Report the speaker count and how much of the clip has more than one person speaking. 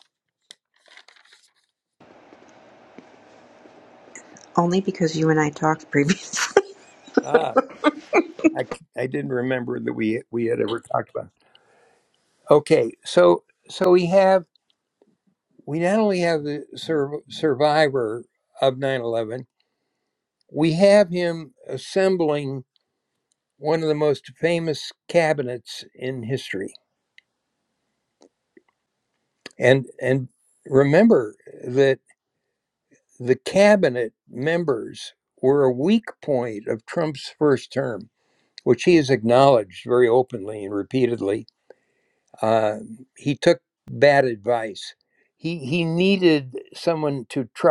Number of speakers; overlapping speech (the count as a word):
two, no overlap